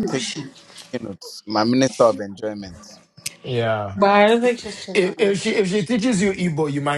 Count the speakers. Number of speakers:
3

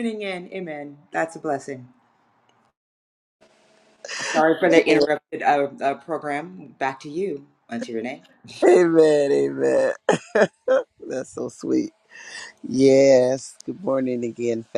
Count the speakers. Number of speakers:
2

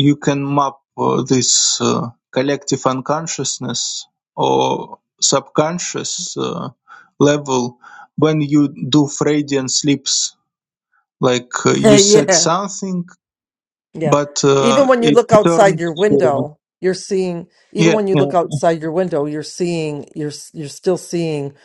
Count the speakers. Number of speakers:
2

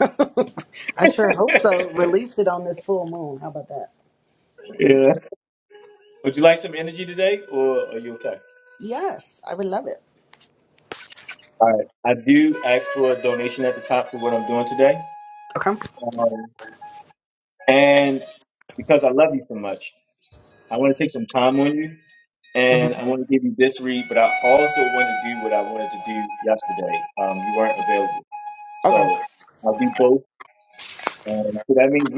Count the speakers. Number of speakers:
2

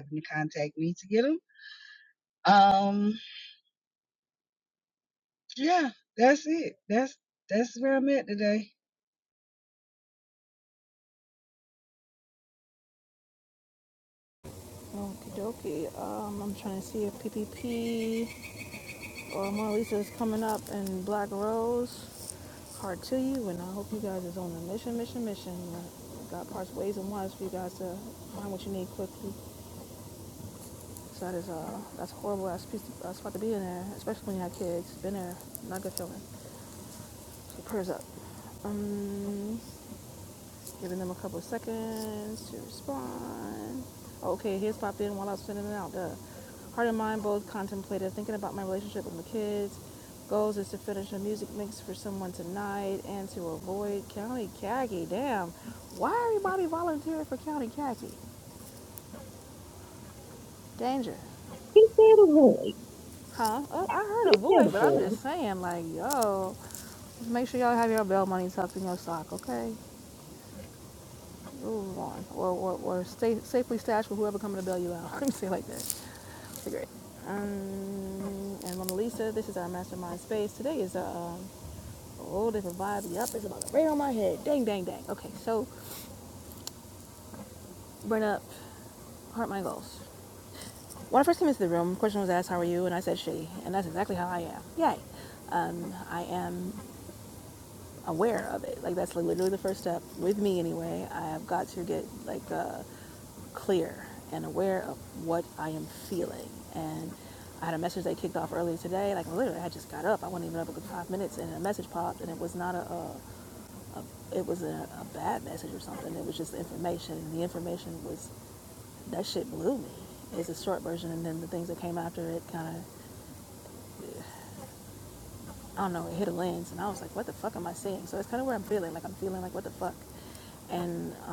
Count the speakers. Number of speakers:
3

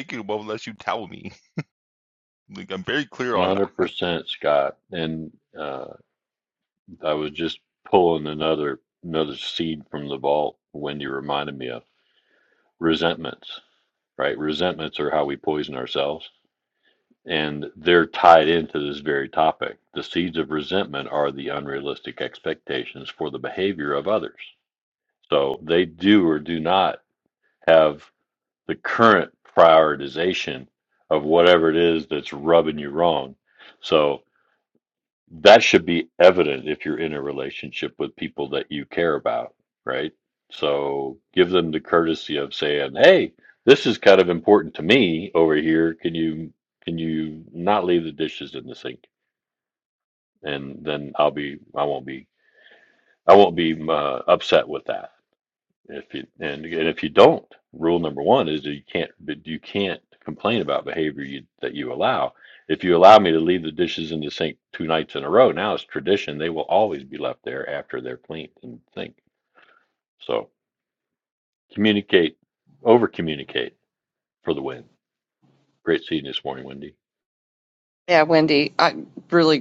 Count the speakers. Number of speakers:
3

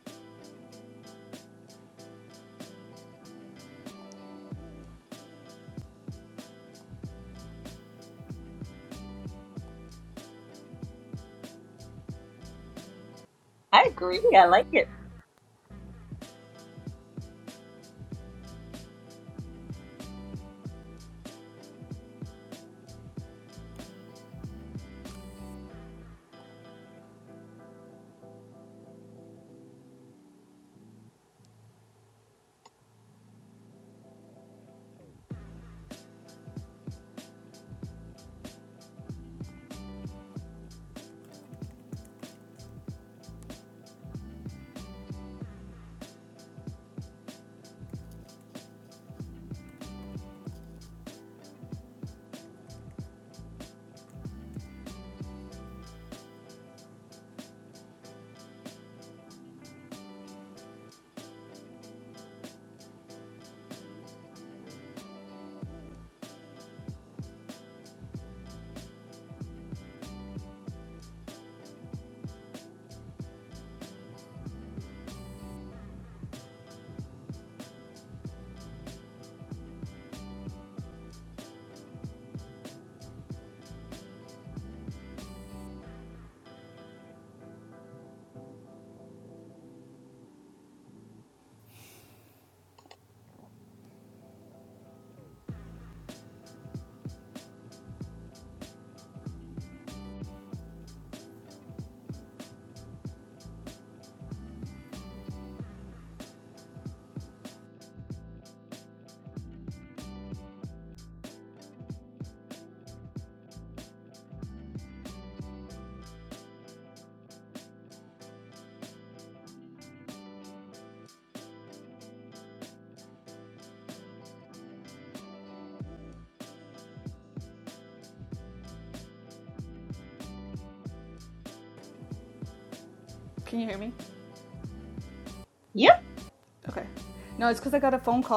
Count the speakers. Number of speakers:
2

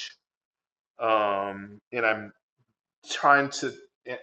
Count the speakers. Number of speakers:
1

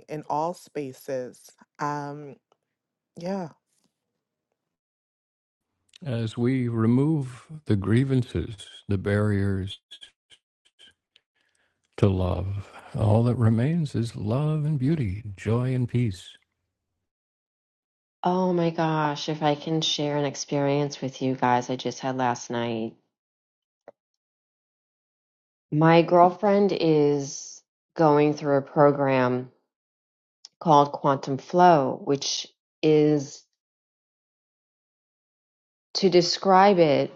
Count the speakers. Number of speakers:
3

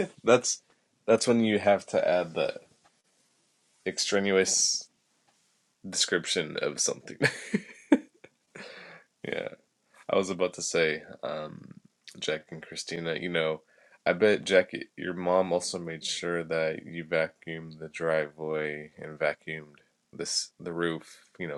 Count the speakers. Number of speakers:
1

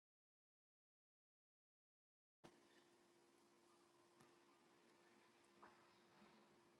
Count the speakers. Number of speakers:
0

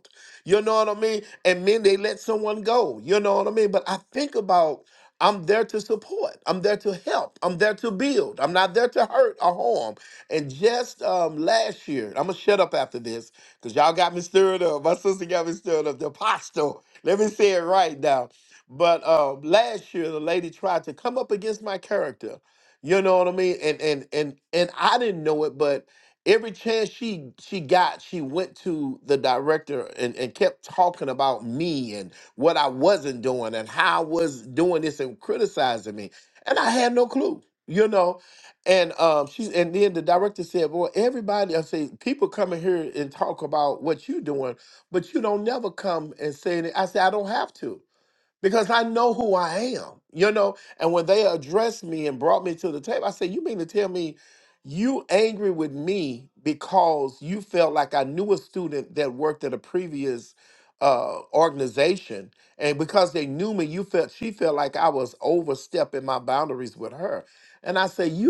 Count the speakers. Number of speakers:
1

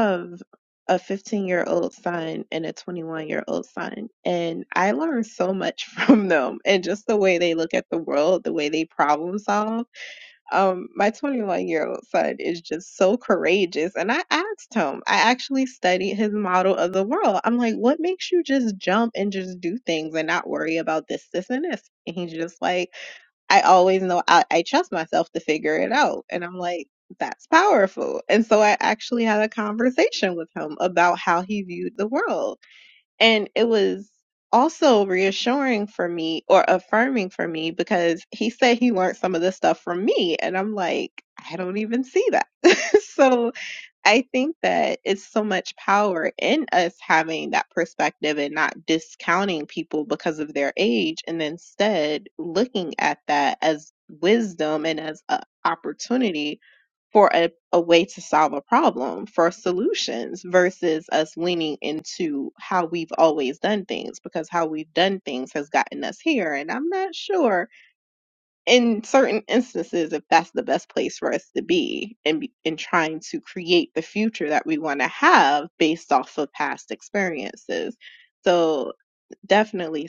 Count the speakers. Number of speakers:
1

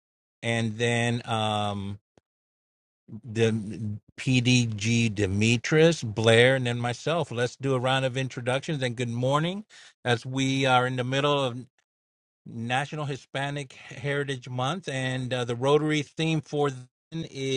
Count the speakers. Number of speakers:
1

